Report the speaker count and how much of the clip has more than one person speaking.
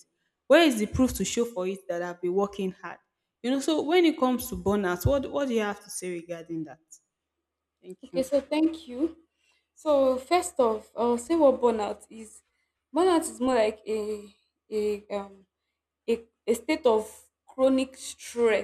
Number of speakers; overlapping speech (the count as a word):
two, about 1%